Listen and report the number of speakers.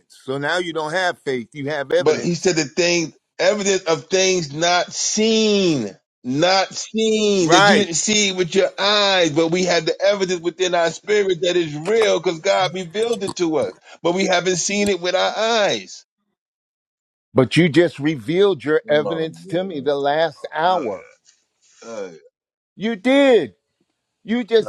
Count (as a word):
two